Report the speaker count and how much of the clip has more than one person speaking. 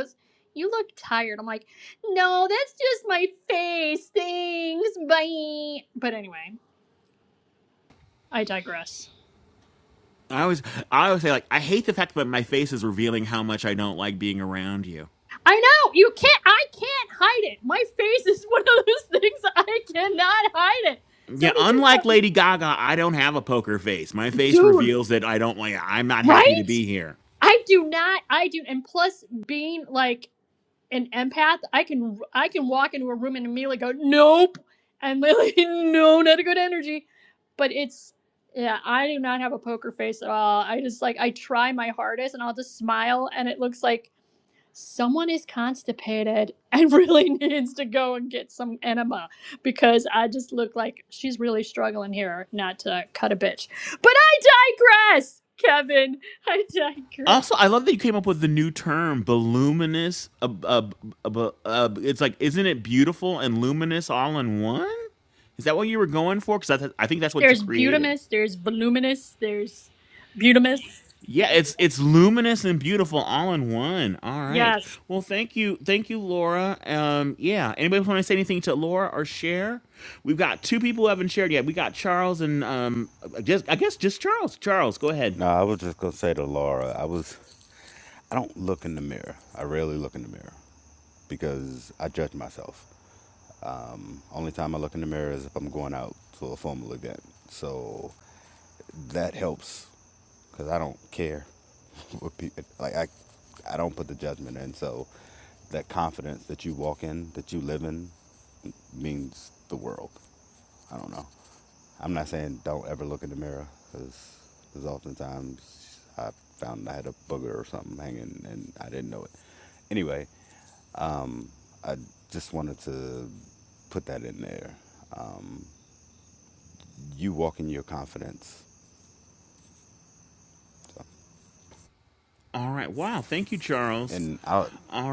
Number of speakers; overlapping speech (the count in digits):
3, about 2%